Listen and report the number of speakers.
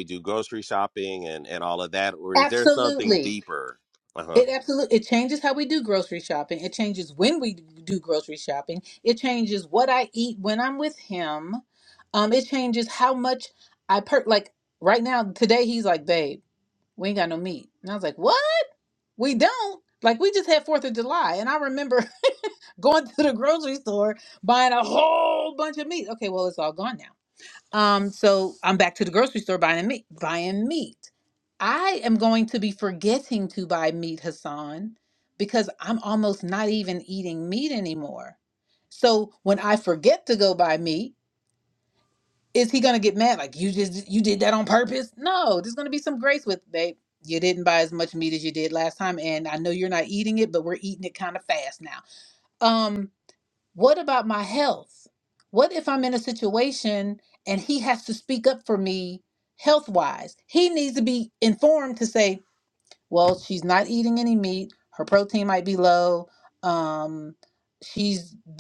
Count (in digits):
2